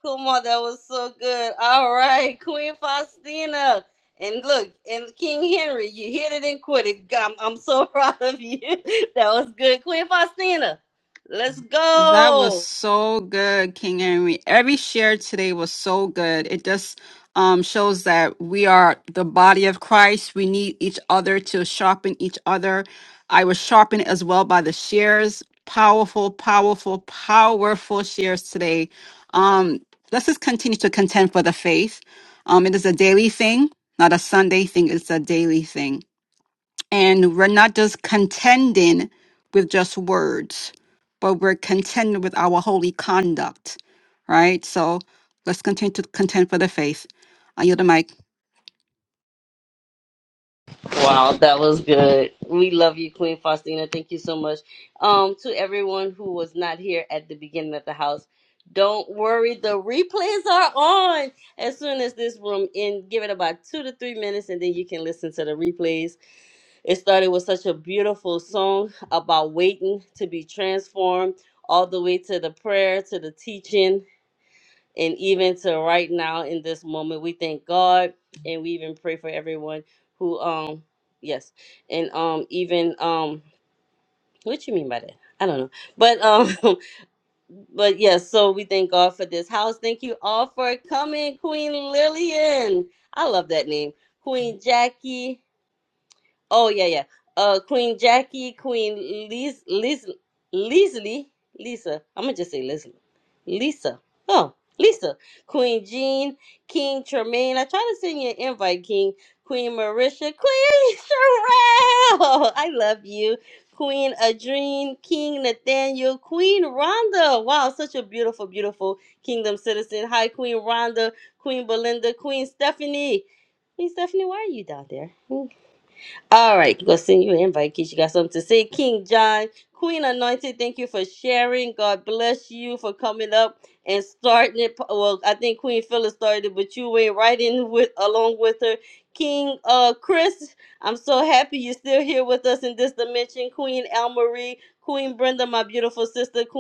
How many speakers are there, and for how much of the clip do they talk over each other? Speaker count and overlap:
2, under 1%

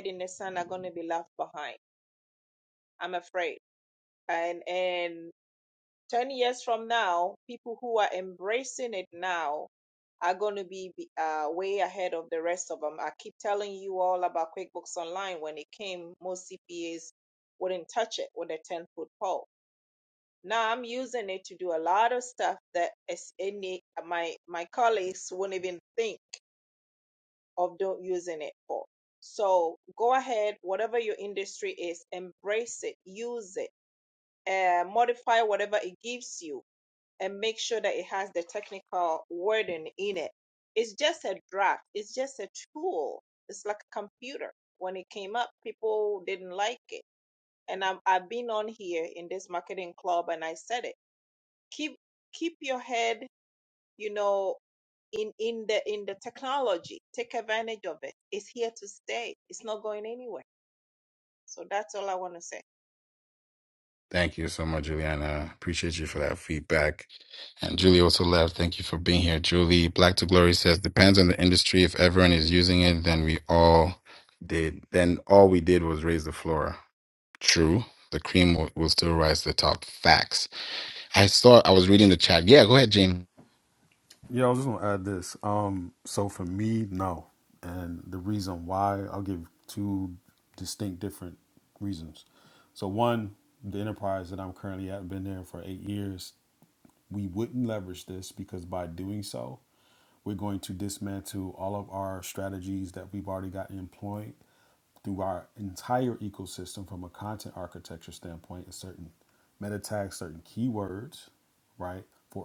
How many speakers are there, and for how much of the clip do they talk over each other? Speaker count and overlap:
3, no overlap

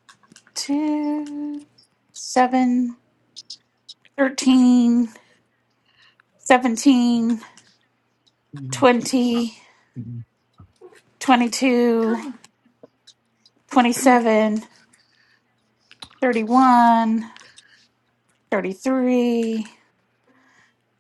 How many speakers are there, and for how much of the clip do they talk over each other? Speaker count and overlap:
1, no overlap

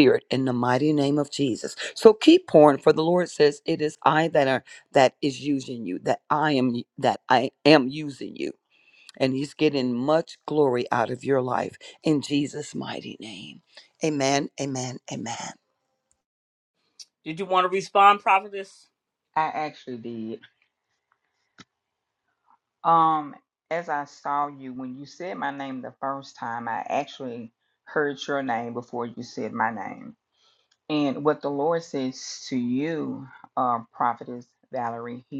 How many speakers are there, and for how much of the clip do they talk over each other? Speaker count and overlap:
3, no overlap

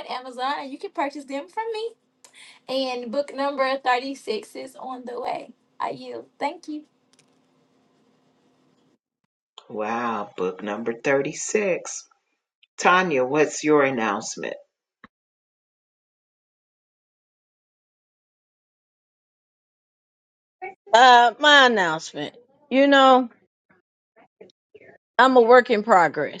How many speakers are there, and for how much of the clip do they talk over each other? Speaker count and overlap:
3, no overlap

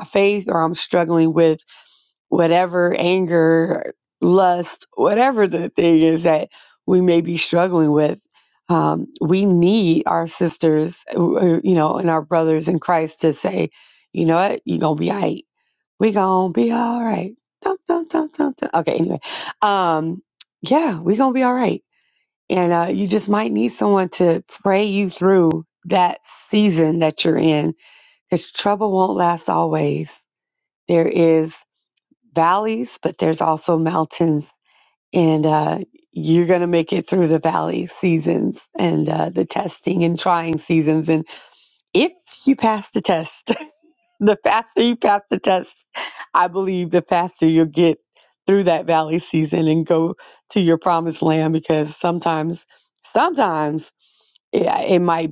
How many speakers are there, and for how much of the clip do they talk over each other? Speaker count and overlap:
1, no overlap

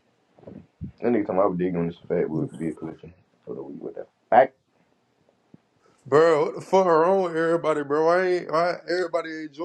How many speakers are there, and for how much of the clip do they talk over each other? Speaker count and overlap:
2, no overlap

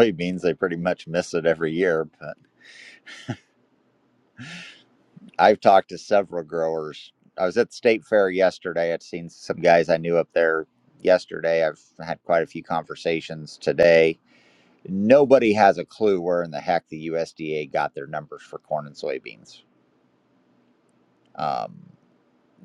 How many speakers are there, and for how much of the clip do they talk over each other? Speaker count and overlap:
1, no overlap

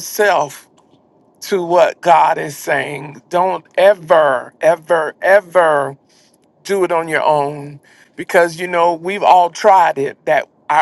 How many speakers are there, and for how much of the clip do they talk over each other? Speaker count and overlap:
1, no overlap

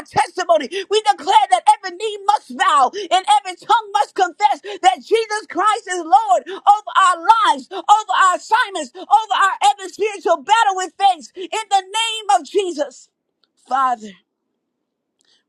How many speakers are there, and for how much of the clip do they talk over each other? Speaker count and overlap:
1, no overlap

